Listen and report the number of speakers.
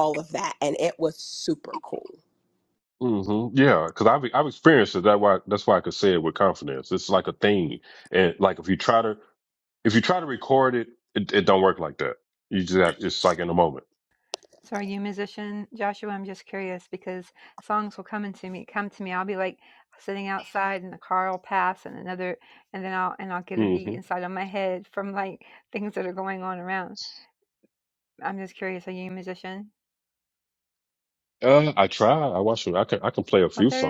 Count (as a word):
three